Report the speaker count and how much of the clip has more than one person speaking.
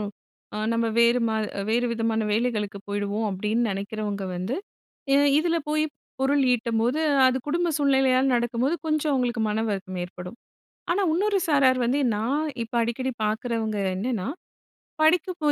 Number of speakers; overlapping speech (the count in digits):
1, no overlap